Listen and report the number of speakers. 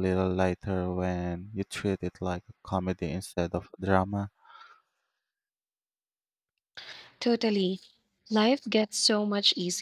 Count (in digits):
2